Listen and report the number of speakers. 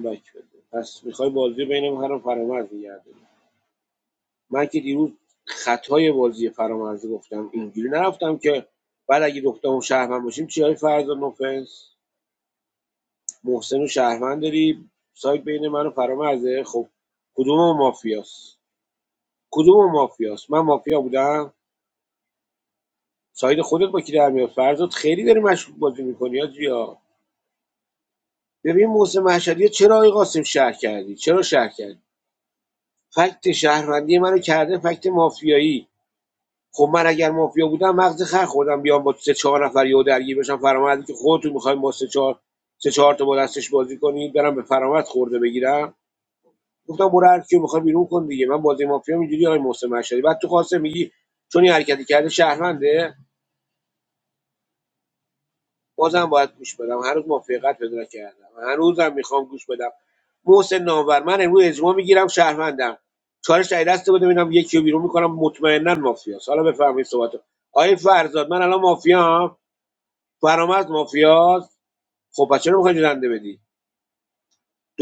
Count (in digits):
1